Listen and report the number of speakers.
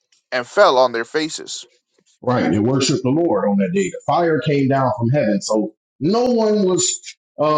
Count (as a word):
two